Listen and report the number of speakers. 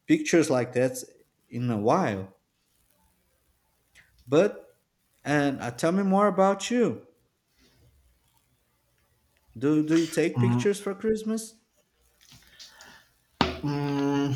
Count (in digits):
2